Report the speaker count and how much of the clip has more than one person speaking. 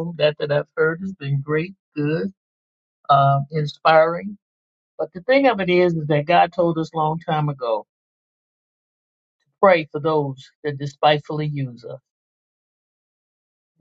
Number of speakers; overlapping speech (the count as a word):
one, no overlap